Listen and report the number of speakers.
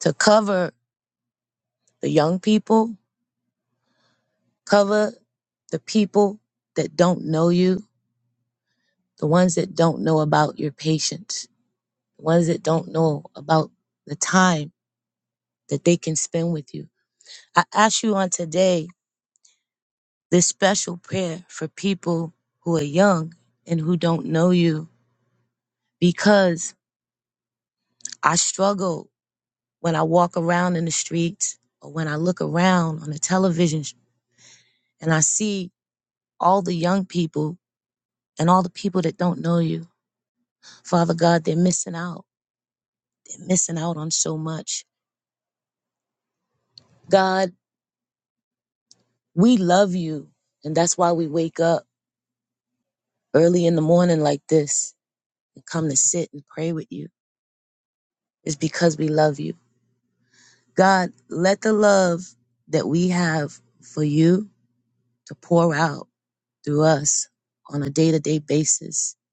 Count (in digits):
1